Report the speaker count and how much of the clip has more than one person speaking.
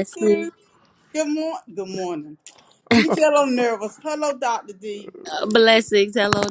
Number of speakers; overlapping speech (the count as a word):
two, about 7%